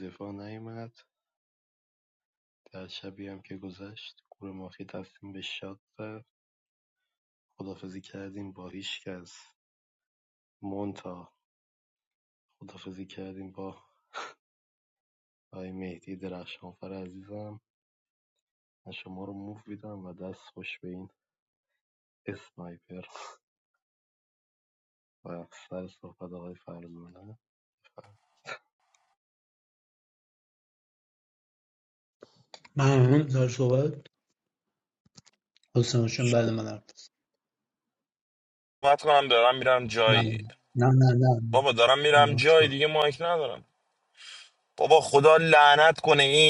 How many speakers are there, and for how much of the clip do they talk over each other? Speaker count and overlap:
3, about 2%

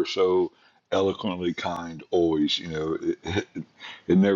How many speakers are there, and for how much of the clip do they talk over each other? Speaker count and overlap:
1, no overlap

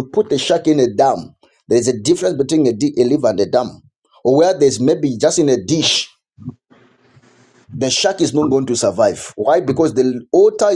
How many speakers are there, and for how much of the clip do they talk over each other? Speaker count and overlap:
1, no overlap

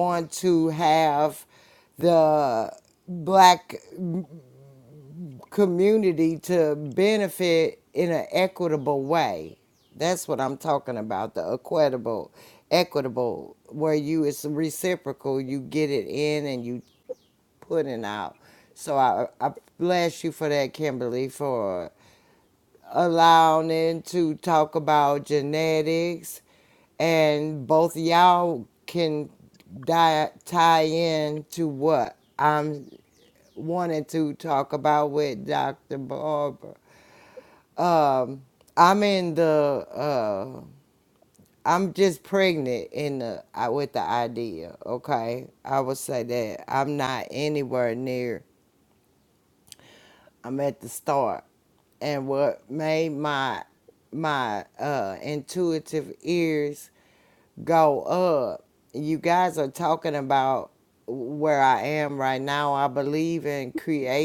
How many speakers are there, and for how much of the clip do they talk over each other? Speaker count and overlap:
1, no overlap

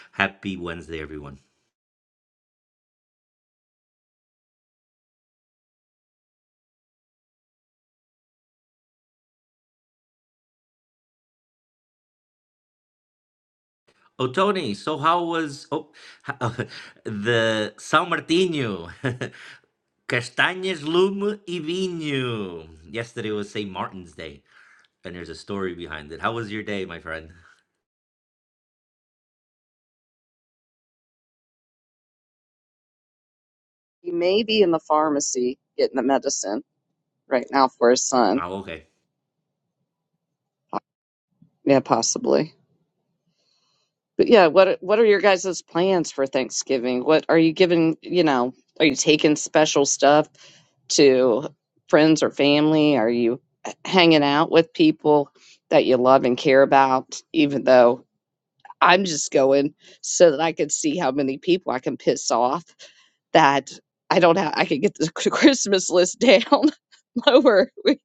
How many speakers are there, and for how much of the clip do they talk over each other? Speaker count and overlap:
2, under 1%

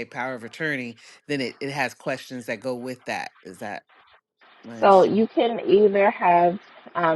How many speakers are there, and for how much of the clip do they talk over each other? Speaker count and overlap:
2, about 5%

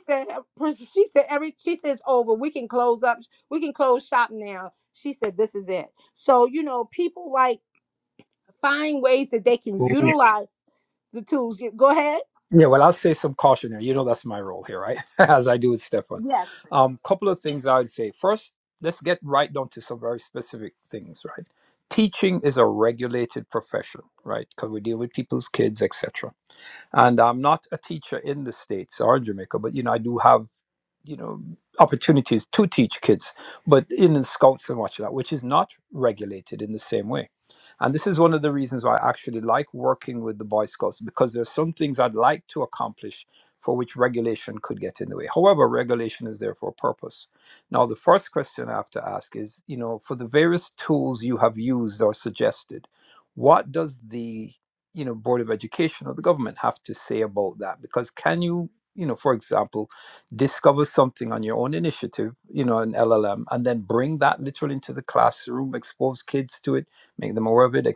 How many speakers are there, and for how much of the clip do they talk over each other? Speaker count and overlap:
2, under 1%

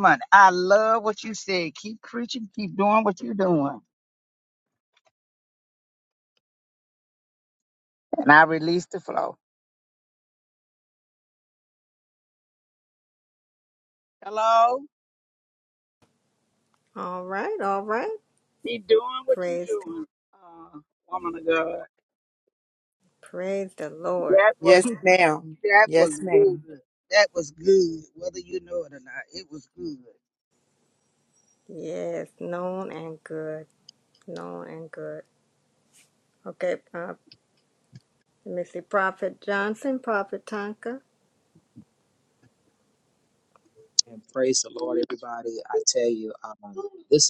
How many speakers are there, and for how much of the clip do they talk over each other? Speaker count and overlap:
4, about 3%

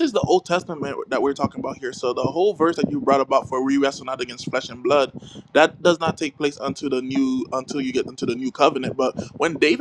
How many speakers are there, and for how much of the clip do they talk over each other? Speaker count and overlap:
1, no overlap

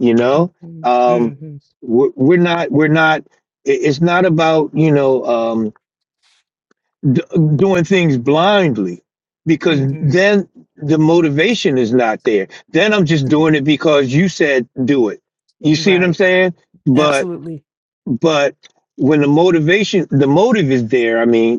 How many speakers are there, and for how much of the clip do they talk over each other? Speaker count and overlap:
2, about 8%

